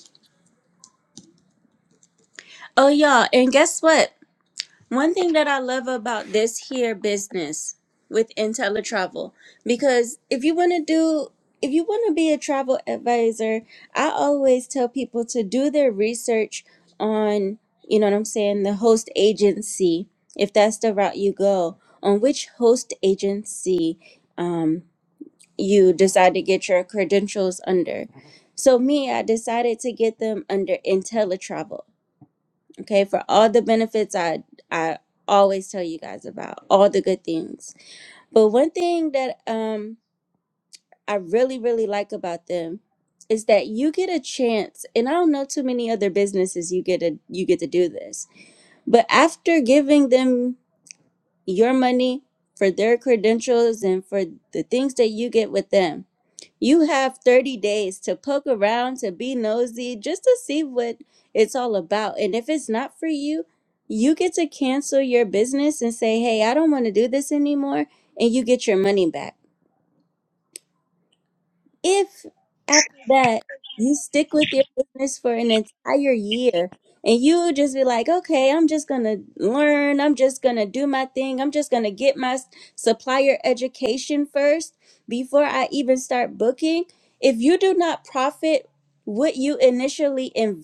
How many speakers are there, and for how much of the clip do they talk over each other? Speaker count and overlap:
one, no overlap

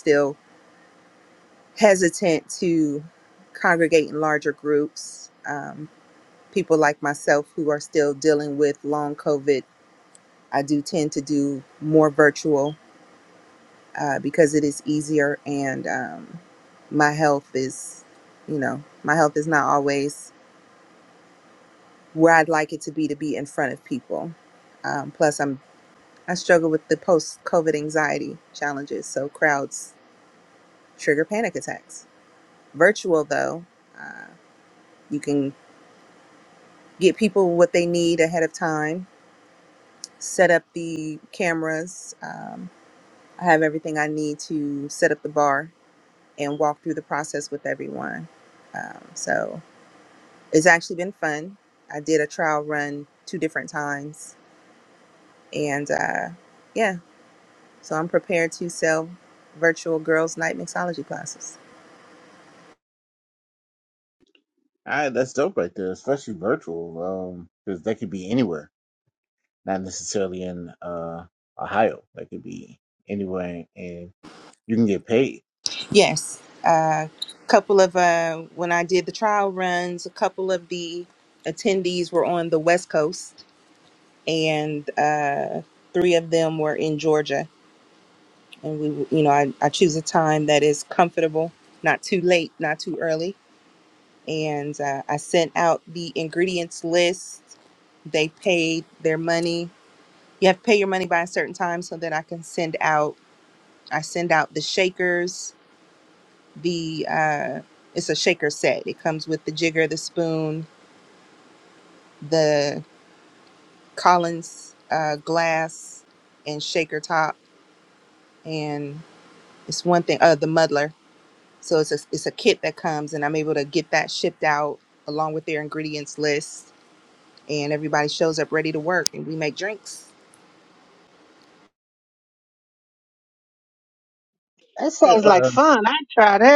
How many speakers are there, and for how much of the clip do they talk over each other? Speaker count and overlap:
three, no overlap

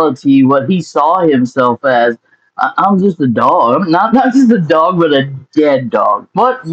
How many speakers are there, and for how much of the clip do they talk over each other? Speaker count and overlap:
one, no overlap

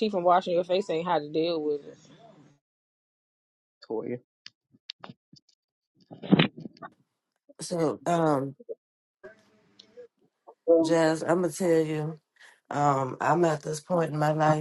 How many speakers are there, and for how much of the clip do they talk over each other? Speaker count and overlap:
three, about 7%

